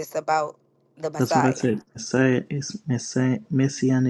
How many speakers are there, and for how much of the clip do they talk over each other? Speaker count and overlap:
2, about 11%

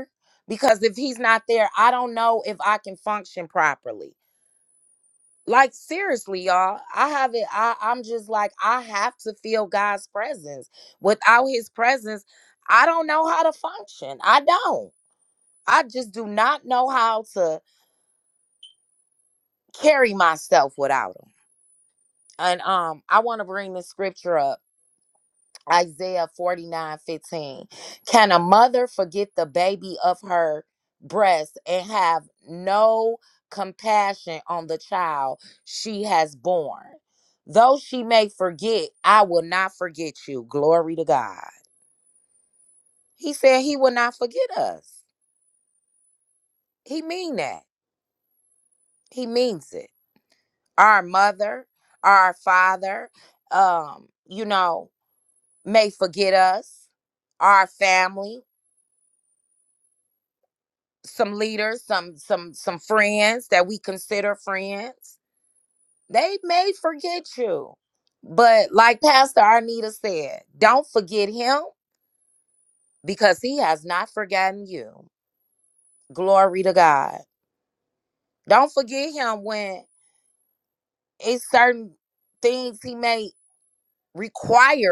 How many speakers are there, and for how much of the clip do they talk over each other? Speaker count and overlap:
1, no overlap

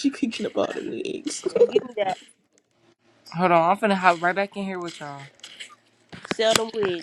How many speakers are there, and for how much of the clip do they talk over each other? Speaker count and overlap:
3, no overlap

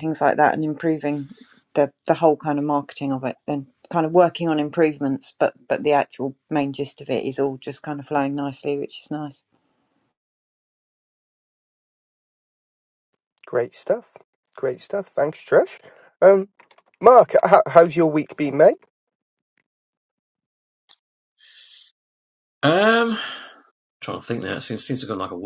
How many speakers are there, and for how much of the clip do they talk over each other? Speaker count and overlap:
3, no overlap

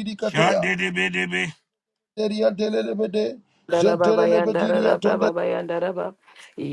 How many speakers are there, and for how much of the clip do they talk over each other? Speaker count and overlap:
3, about 21%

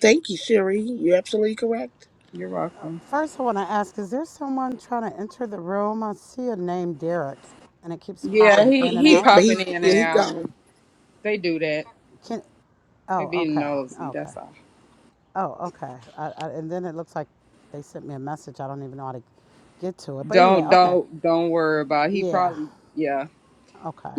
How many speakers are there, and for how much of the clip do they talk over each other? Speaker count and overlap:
3, about 18%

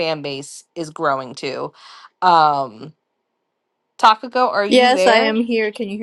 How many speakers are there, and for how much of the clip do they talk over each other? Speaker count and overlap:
2, about 11%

